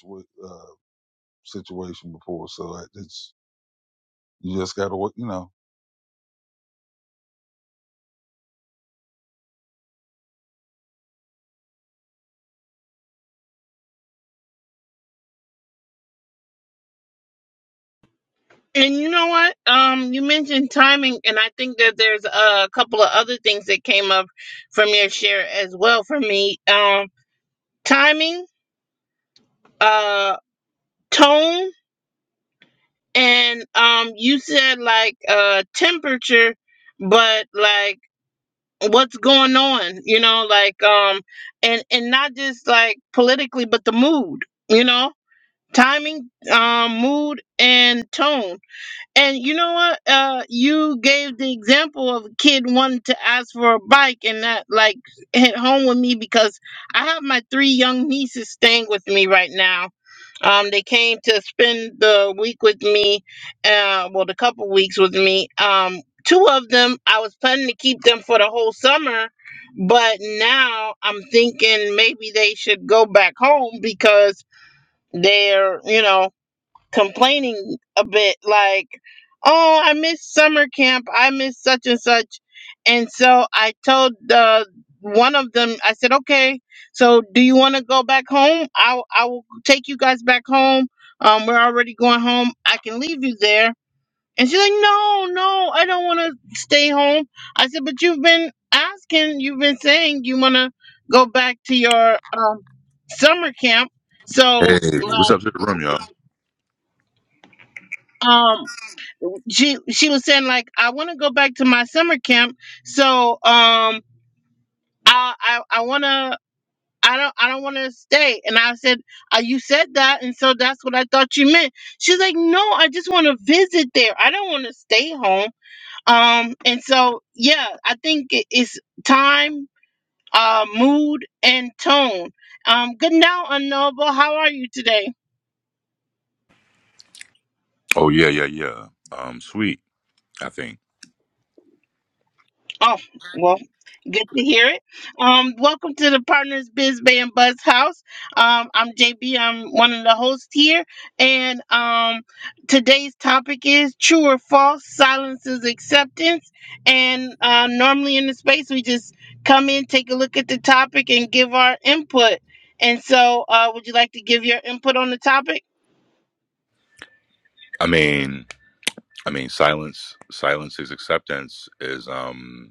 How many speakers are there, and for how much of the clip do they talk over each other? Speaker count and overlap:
3, under 1%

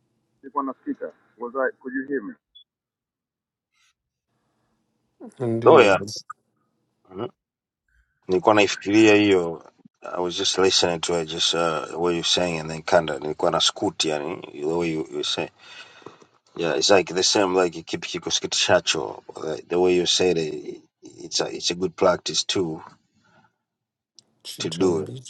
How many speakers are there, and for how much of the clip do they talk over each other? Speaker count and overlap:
3, about 4%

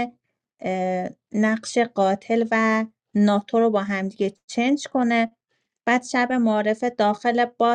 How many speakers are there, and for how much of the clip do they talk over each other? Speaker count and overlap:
1, no overlap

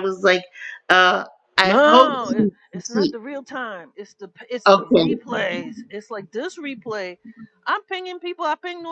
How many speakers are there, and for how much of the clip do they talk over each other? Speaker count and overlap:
2, about 18%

